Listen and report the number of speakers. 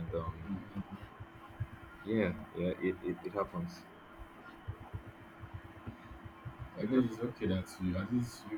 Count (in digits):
2